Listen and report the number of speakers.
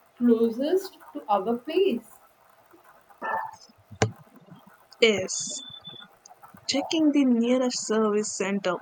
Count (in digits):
2